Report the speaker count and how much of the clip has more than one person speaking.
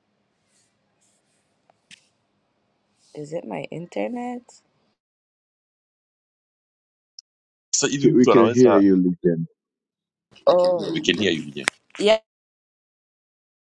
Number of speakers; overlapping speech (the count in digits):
3, about 7%